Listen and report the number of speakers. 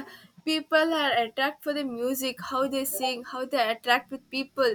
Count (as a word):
one